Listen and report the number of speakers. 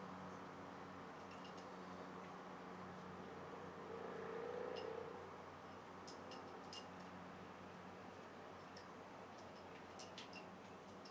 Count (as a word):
zero